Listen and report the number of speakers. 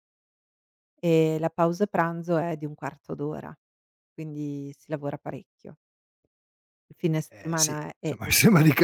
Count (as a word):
two